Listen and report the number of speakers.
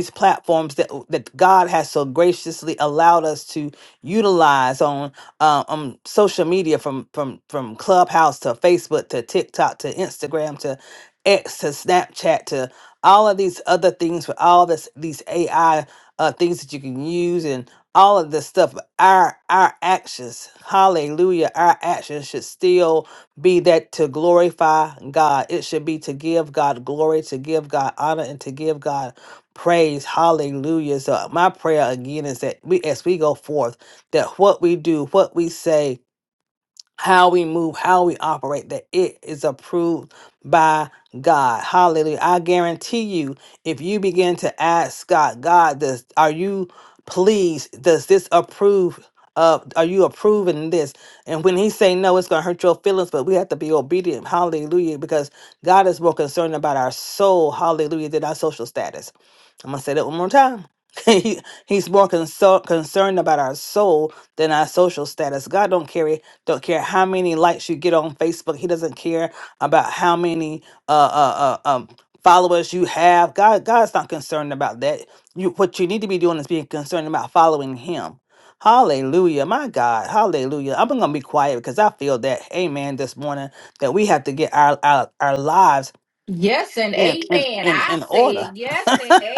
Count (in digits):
2